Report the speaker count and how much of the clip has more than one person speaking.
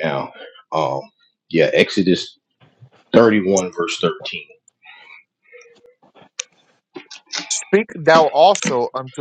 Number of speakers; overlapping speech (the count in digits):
2, no overlap